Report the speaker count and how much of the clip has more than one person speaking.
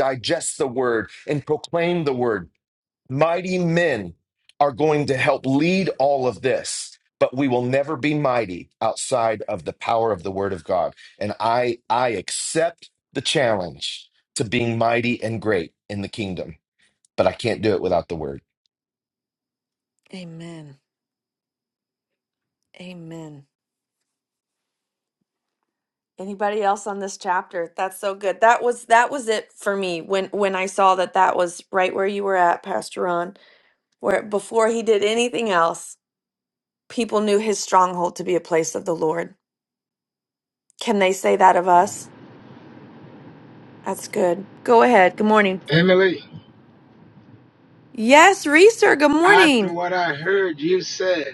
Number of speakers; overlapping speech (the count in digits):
3, about 1%